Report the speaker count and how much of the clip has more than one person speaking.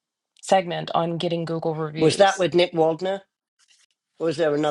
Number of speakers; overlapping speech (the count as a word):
two, about 6%